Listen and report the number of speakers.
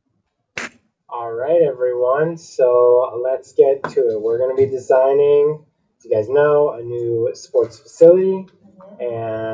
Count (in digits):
1